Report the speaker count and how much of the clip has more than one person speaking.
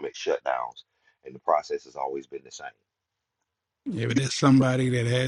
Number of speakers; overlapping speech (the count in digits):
2, no overlap